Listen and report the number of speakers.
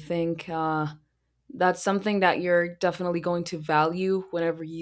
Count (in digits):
1